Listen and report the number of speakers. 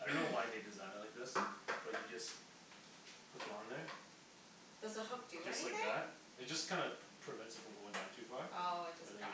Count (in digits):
2